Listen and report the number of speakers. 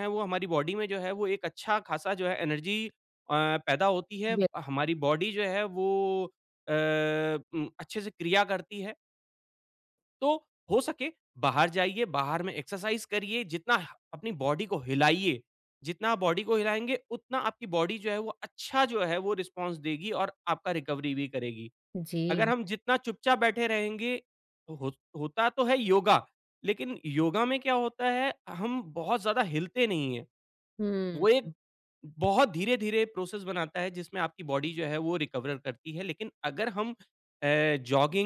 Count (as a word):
two